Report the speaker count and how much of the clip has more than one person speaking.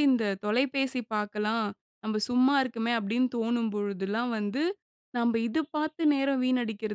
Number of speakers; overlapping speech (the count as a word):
one, no overlap